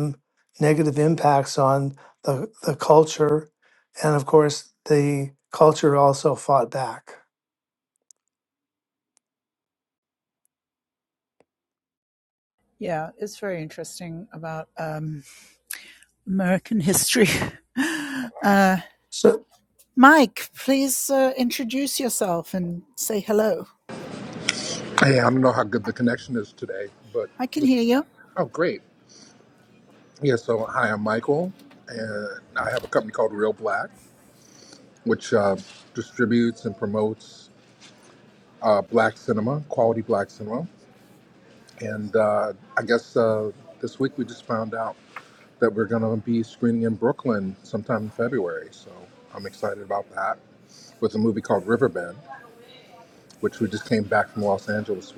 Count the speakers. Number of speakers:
3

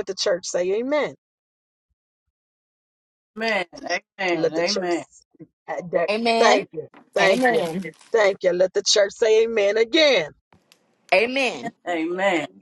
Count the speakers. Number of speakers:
3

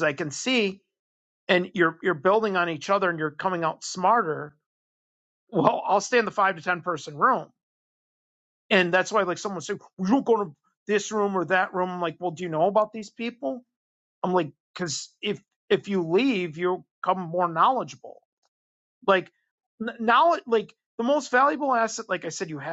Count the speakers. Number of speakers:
1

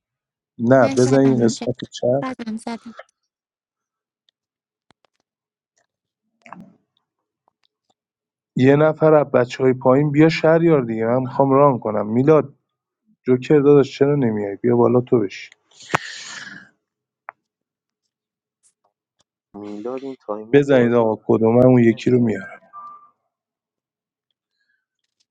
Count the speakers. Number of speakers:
3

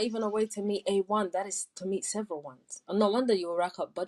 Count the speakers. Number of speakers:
1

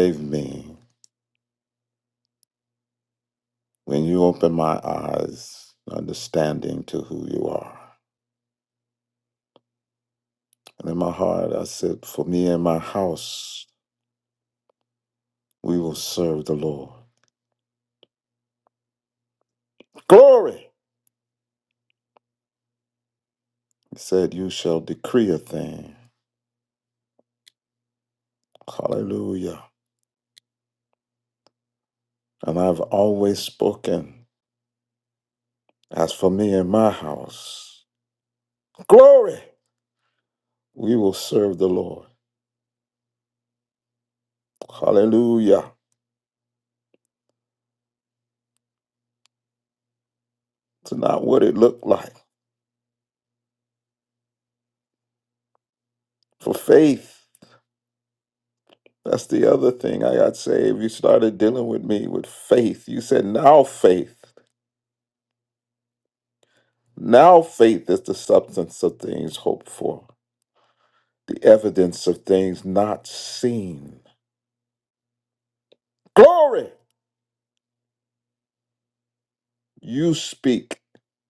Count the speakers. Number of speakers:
1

